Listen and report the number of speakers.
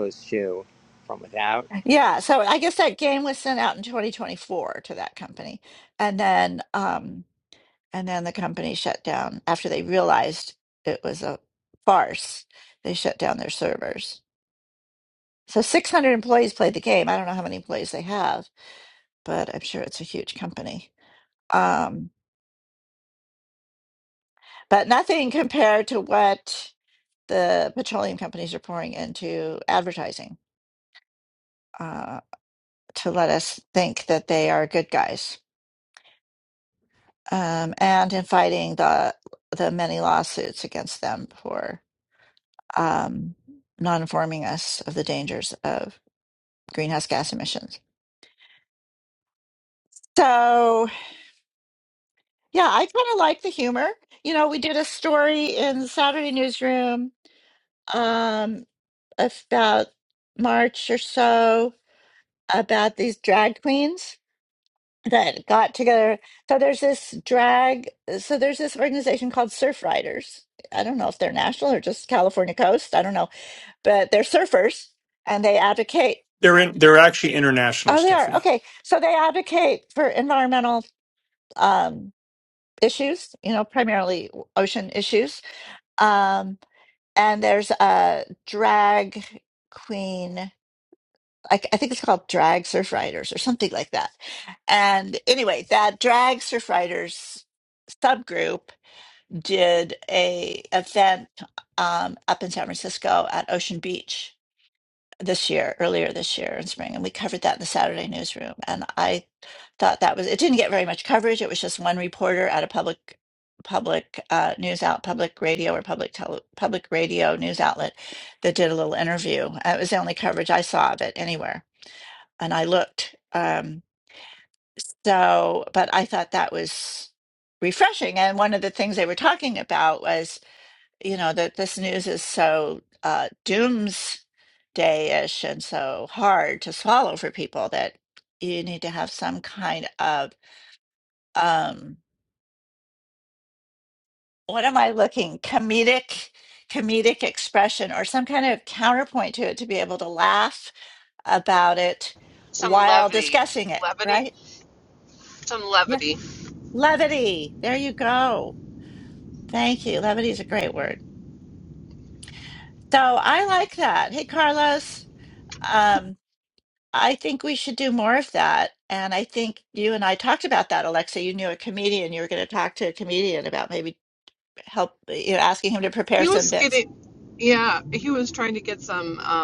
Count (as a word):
four